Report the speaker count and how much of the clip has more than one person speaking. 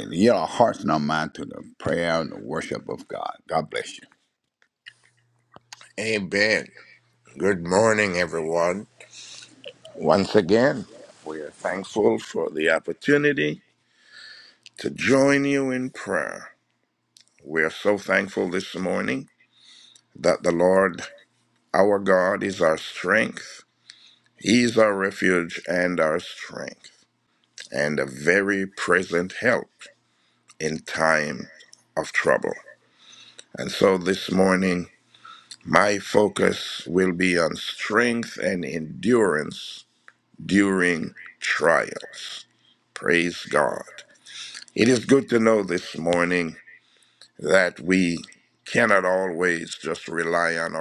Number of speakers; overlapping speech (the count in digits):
2, no overlap